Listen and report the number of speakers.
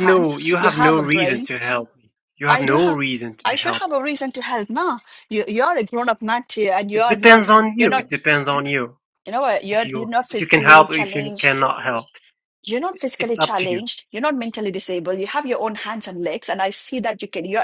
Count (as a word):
two